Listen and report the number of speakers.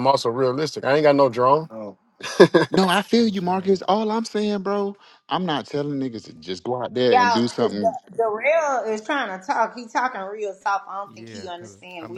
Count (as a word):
three